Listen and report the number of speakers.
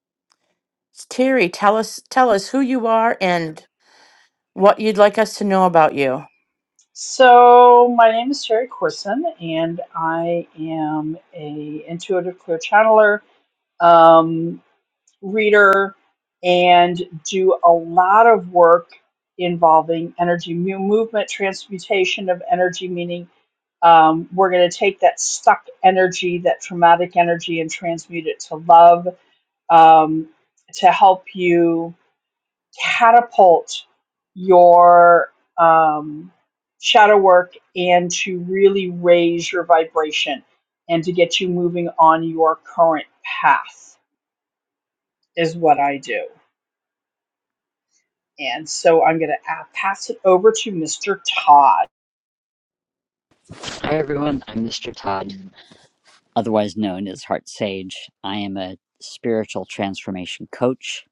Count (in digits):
3